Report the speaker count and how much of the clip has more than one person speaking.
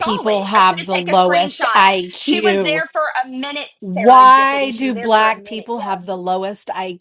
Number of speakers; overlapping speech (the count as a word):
two, about 71%